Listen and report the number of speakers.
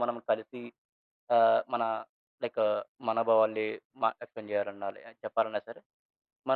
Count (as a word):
one